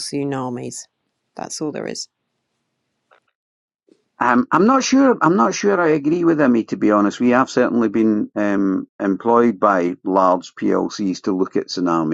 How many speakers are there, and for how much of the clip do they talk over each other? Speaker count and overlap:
2, no overlap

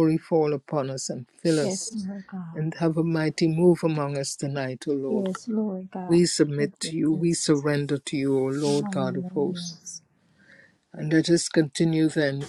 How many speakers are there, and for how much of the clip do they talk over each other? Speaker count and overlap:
2, about 18%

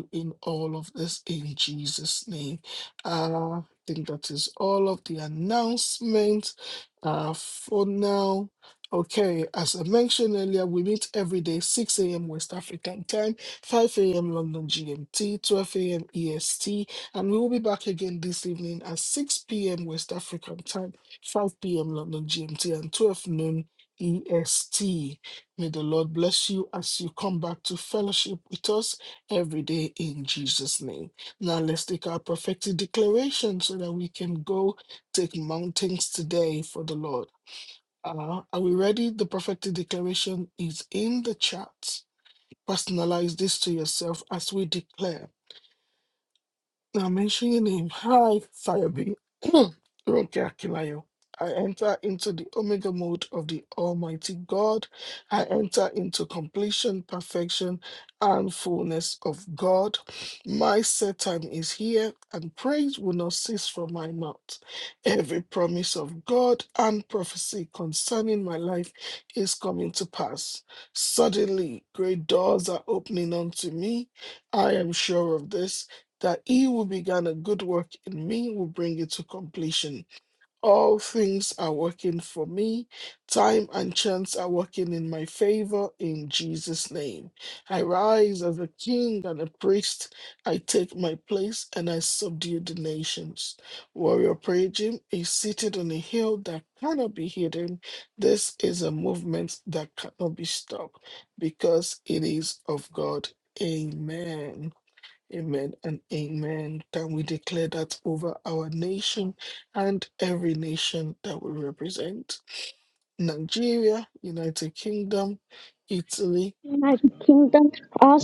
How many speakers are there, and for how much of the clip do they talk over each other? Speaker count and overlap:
2, under 1%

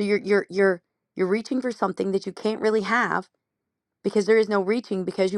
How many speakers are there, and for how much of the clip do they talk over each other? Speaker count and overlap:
1, no overlap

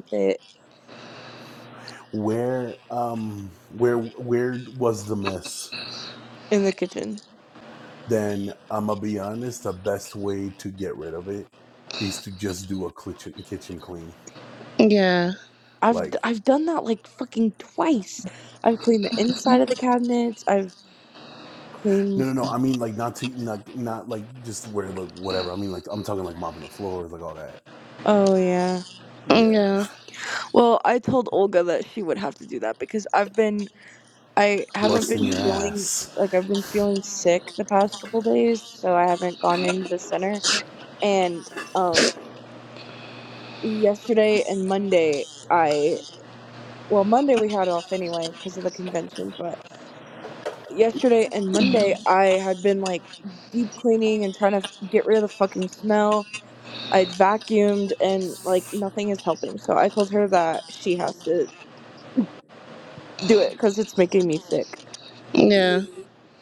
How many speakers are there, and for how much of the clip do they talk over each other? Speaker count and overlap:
3, about 3%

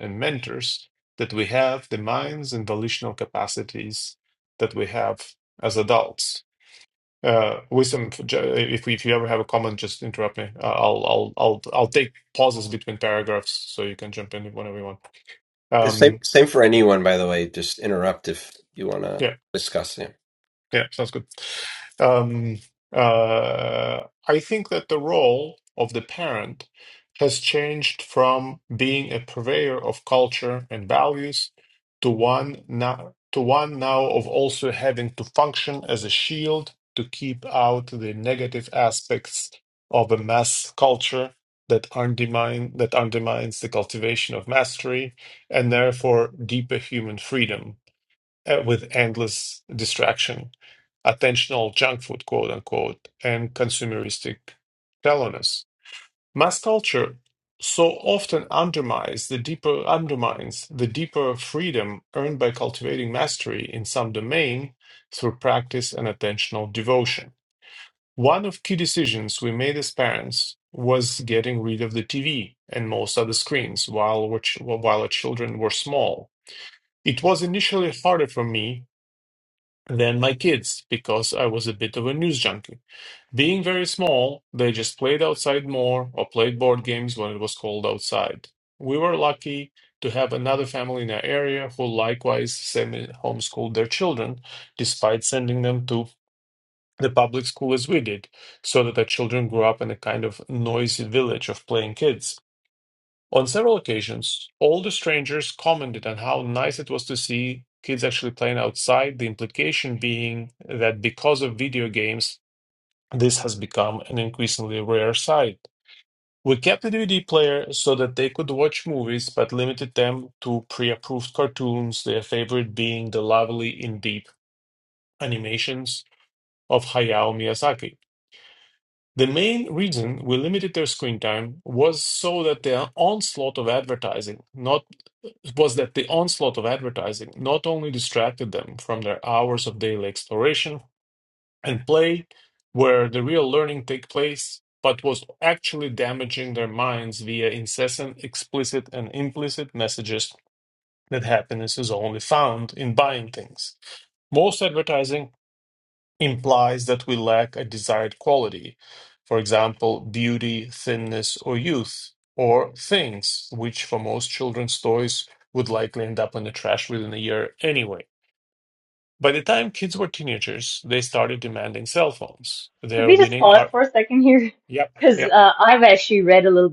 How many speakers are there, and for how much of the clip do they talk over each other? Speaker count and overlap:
3, about 1%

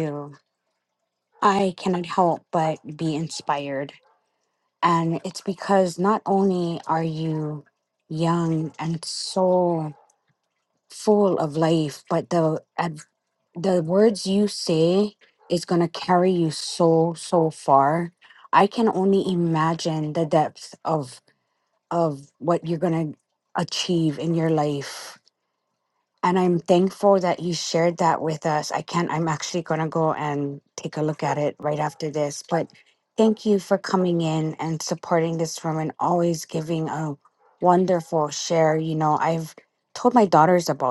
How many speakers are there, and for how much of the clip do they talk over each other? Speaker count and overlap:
1, no overlap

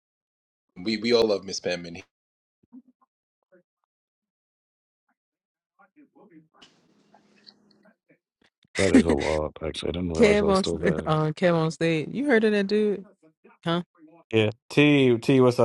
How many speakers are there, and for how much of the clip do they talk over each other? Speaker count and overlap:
4, about 6%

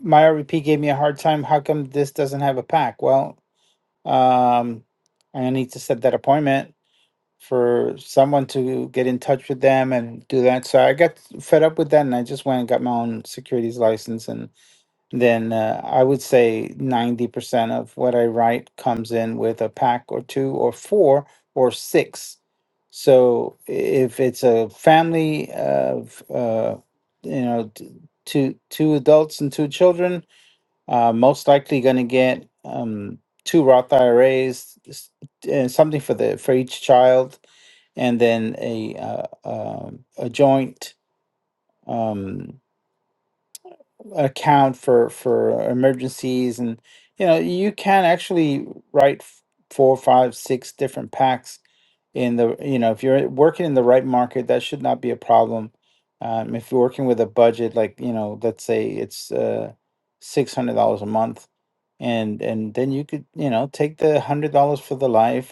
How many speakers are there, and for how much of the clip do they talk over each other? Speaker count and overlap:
1, no overlap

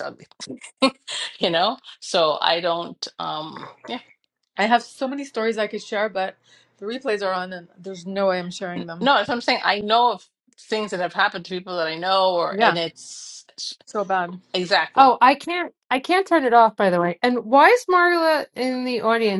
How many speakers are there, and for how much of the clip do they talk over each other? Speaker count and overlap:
3, about 3%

